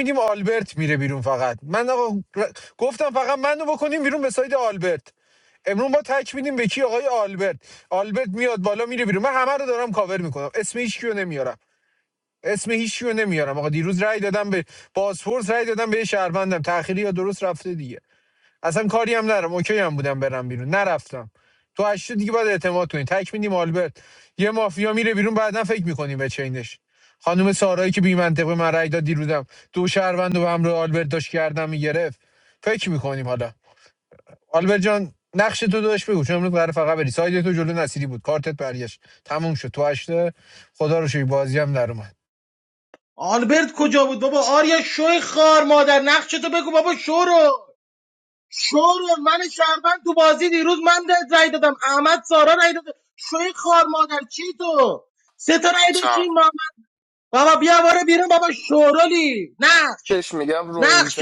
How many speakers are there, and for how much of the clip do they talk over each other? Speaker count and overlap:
three, about 2%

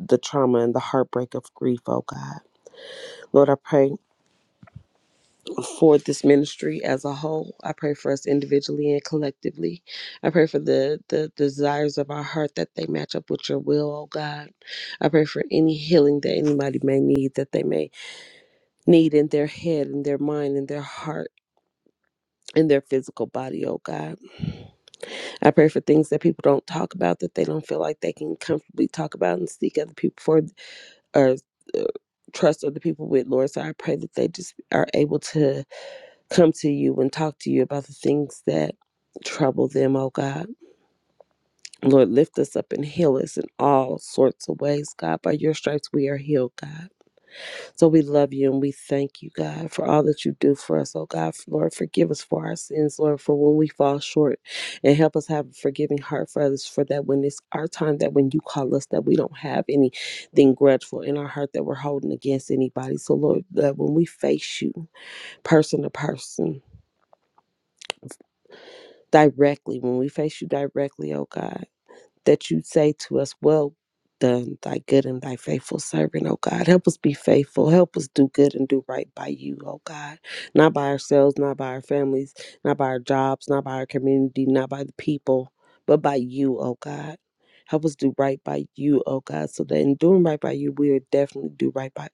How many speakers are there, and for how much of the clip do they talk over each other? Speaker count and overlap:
one, no overlap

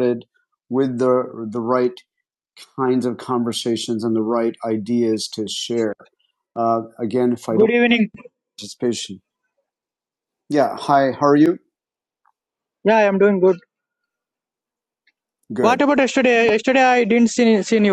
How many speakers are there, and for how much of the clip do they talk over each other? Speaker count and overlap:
two, about 2%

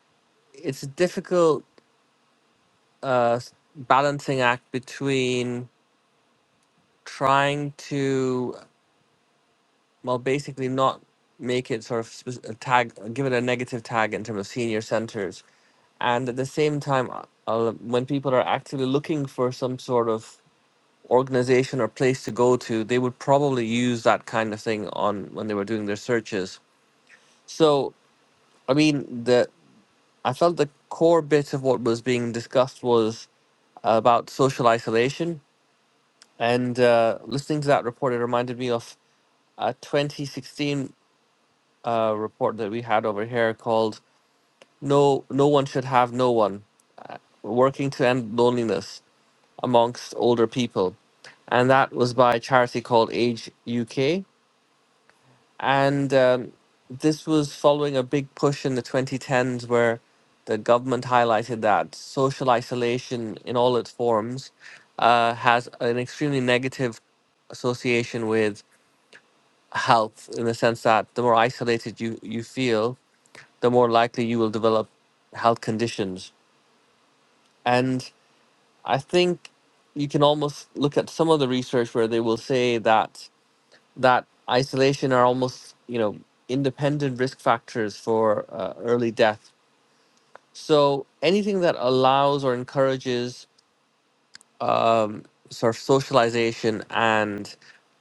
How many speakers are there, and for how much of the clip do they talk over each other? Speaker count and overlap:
one, no overlap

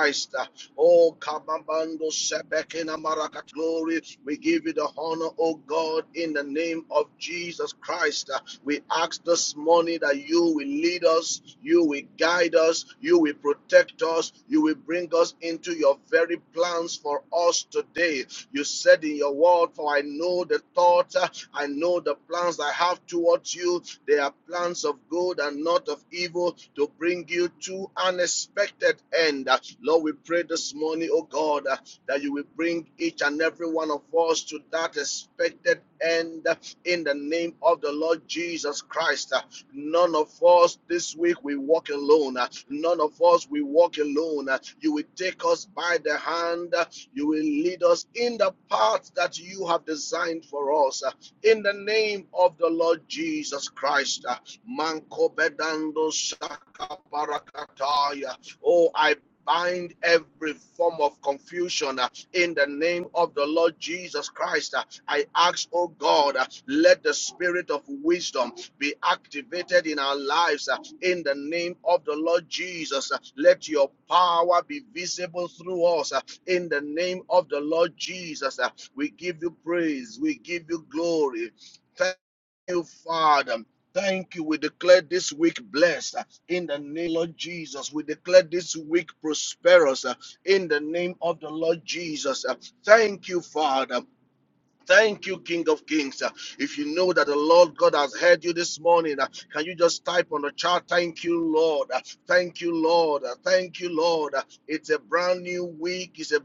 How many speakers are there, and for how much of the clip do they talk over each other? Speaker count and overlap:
one, no overlap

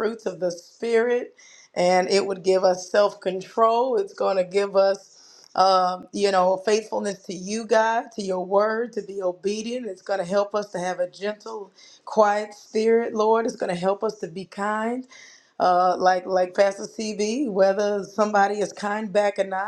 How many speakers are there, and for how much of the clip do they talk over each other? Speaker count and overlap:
one, no overlap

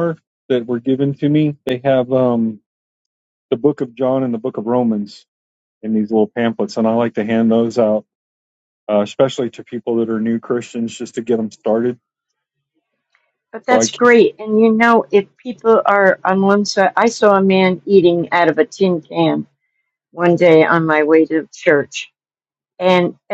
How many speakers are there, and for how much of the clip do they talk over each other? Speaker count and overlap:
two, about 1%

